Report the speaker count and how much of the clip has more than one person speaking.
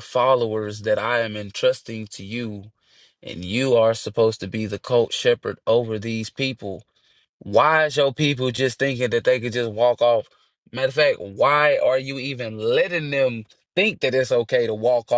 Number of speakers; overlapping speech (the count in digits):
1, no overlap